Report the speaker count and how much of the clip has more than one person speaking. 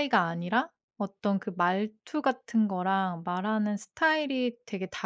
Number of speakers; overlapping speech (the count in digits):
1, no overlap